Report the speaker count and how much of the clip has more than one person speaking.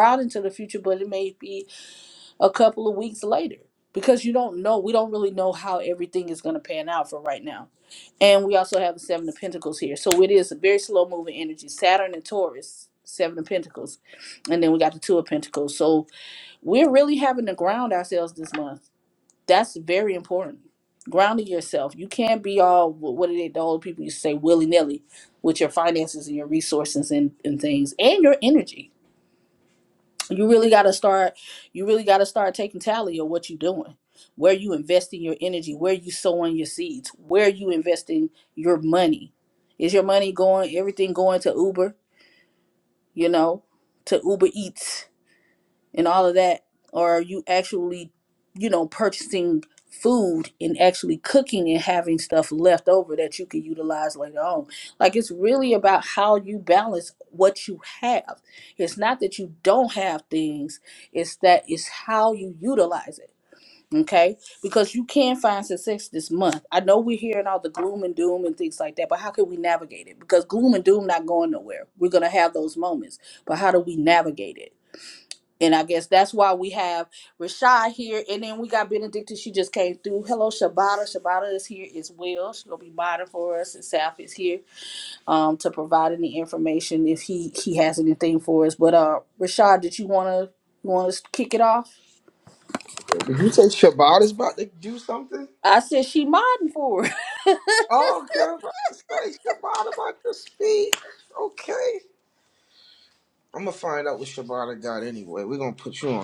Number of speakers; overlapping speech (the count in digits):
2, no overlap